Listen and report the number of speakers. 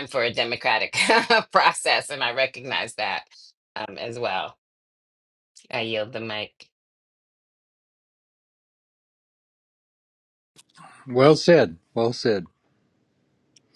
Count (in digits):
2